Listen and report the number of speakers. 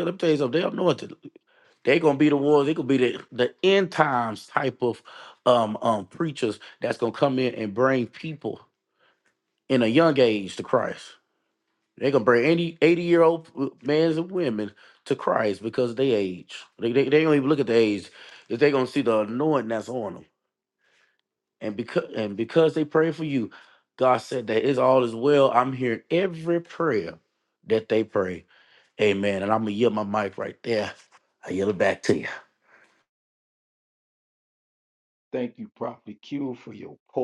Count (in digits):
2